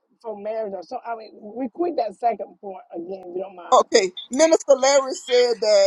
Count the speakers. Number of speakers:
two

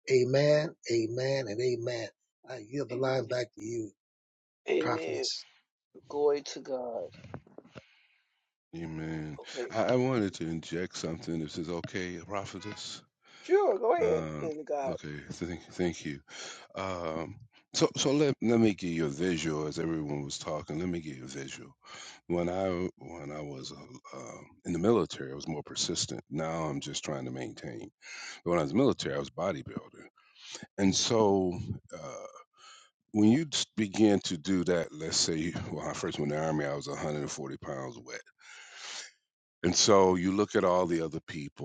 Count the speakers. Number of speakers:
three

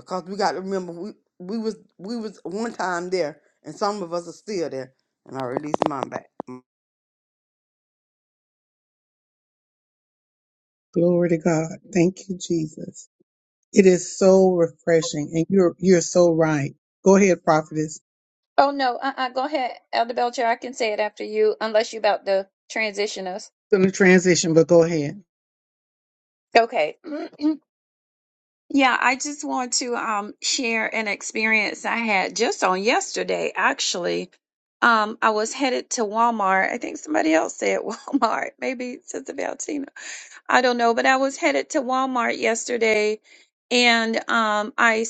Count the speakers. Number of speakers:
three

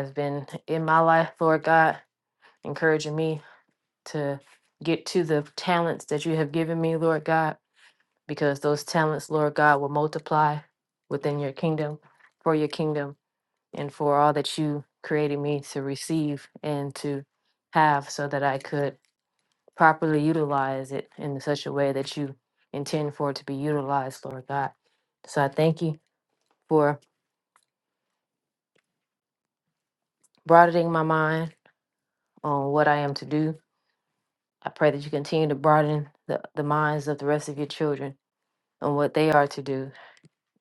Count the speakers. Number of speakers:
one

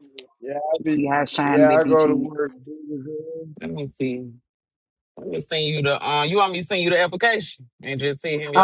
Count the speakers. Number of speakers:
three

